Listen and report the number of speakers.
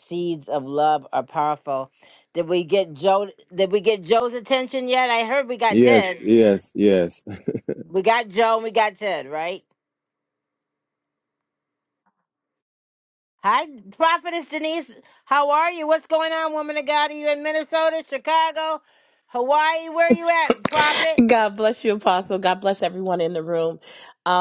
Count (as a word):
three